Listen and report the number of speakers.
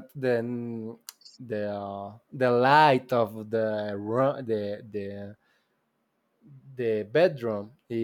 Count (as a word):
one